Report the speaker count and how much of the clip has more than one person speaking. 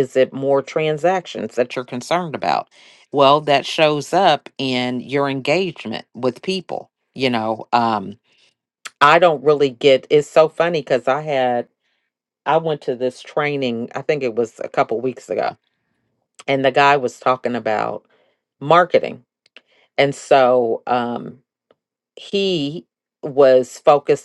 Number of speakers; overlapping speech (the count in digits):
1, no overlap